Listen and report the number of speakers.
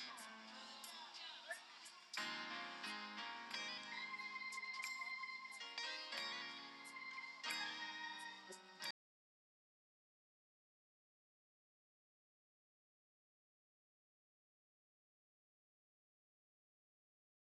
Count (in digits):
0